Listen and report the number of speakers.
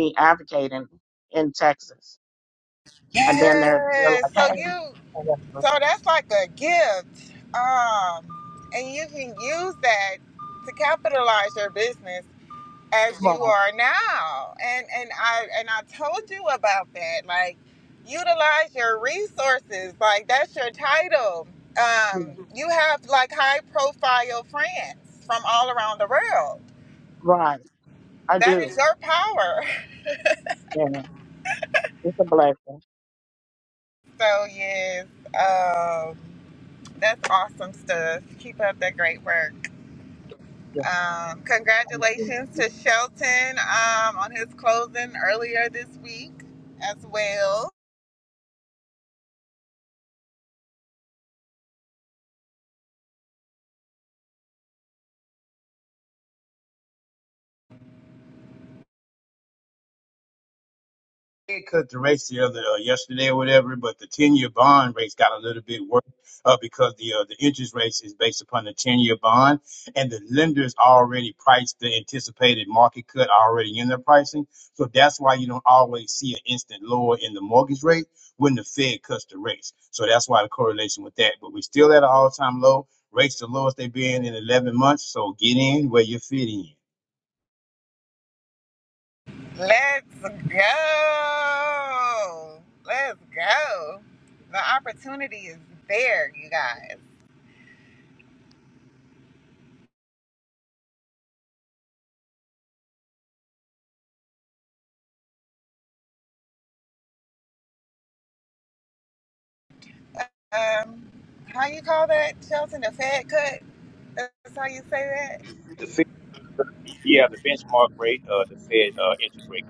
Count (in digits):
3